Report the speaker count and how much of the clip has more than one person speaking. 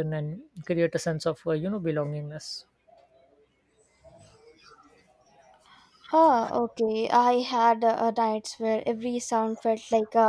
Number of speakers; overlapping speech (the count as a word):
two, no overlap